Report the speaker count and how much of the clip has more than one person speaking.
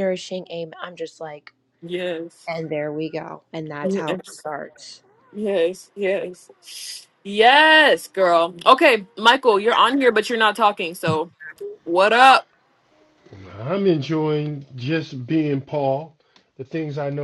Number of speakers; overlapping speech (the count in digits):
3, about 4%